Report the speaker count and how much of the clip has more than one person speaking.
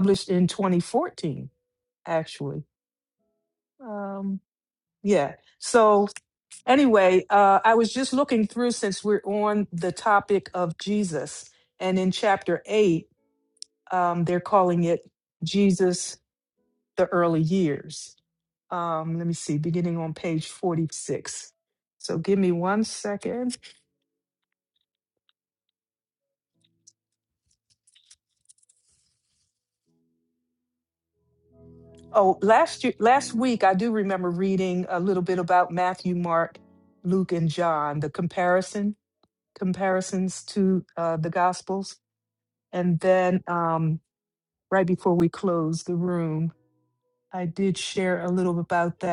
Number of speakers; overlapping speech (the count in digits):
1, no overlap